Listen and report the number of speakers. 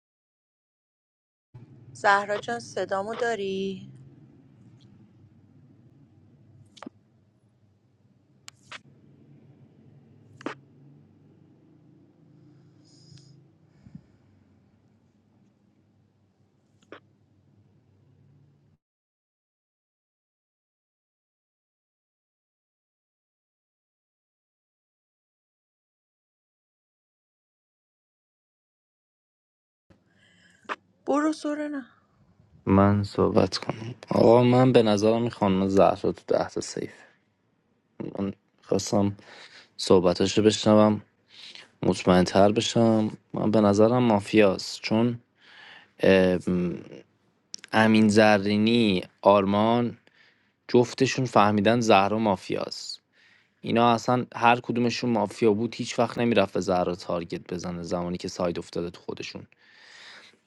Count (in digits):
2